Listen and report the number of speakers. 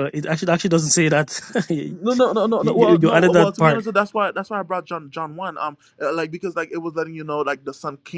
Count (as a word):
two